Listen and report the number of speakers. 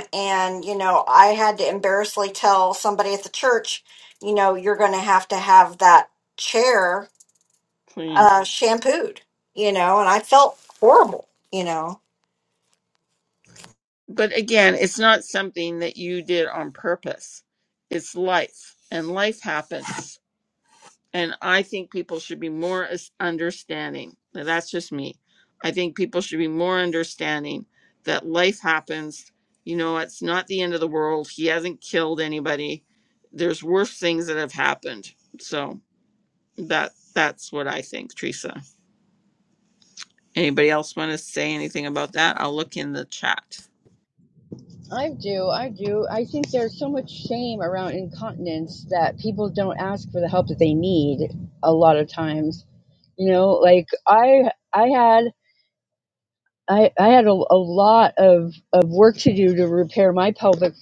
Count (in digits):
3